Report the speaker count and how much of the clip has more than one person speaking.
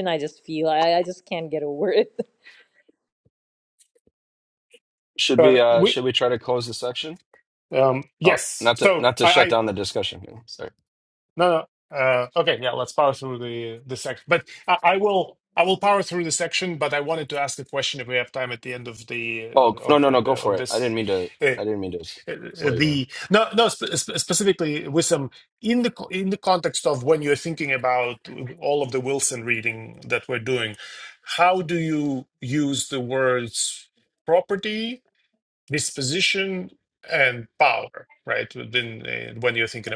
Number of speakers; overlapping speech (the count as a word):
three, about 9%